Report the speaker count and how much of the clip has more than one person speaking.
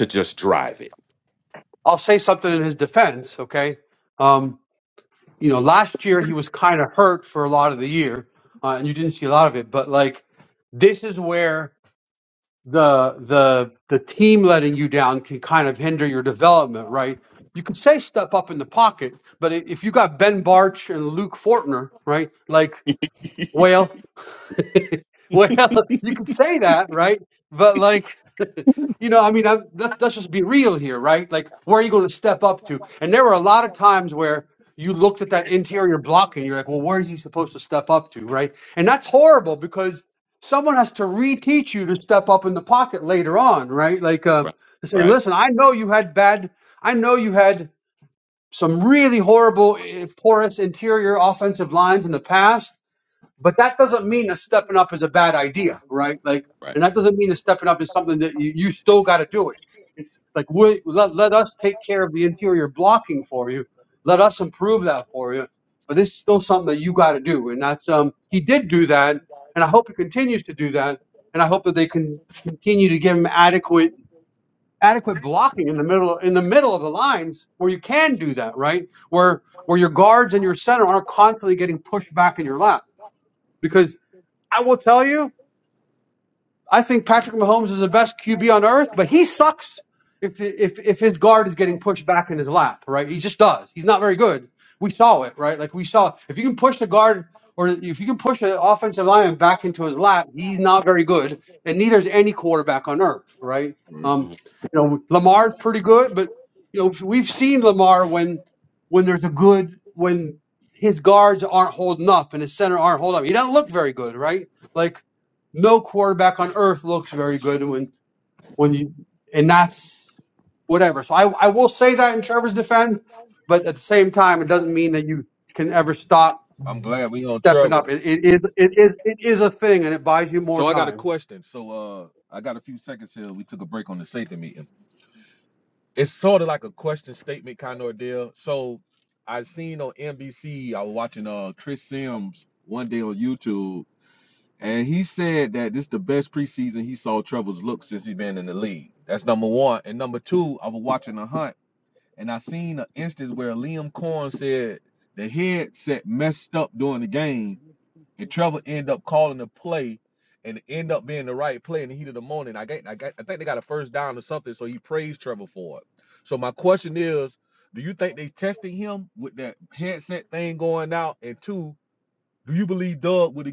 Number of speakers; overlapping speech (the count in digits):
3, about 1%